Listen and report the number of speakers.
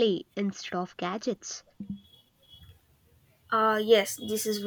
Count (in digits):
2